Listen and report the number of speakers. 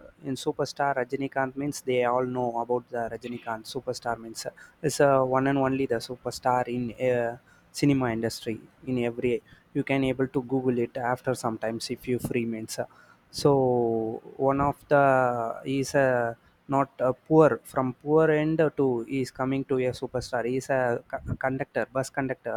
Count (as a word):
one